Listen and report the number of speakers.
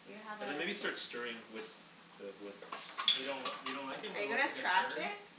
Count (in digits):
3